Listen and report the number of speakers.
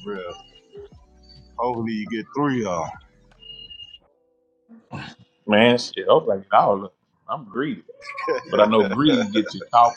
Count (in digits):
2